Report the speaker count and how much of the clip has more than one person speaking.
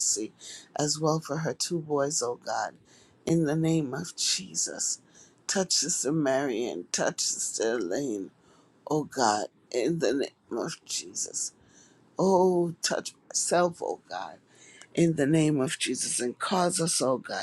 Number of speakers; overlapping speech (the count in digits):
1, no overlap